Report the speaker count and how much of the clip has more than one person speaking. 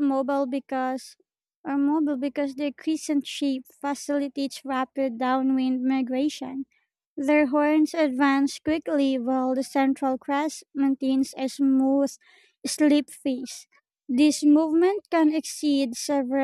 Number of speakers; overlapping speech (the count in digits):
1, no overlap